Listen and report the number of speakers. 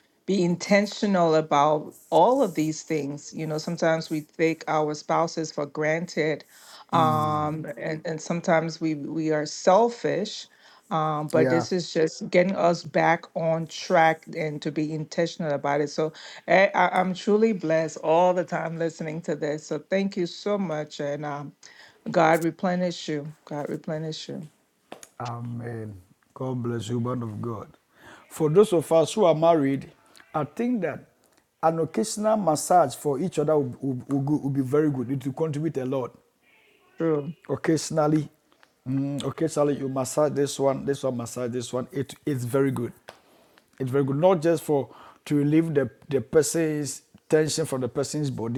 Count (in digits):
2